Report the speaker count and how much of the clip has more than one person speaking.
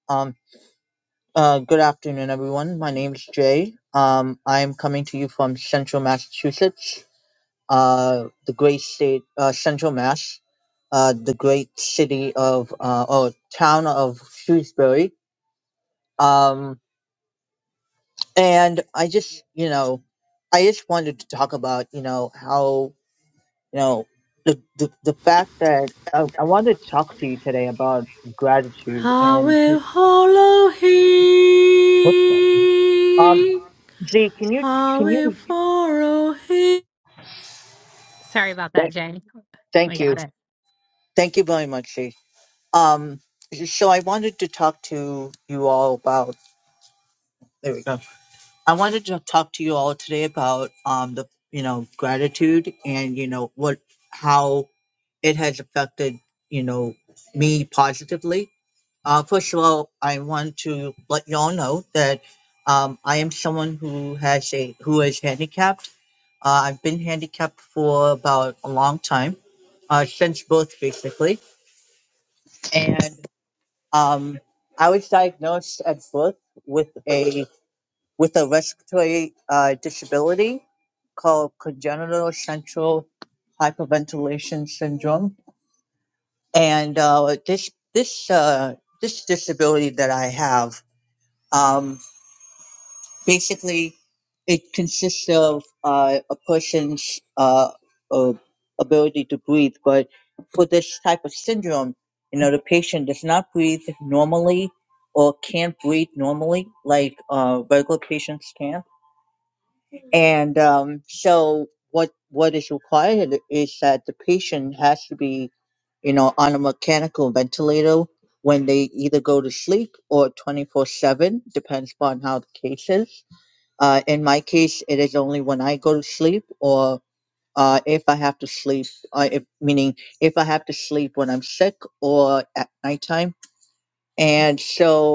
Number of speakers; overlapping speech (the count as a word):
three, about 1%